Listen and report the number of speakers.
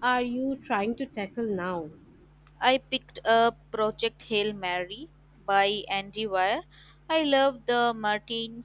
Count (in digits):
2